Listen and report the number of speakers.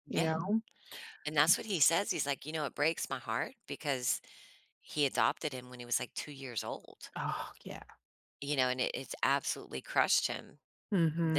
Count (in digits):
2